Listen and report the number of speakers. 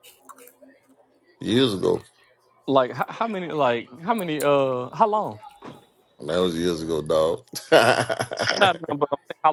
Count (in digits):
2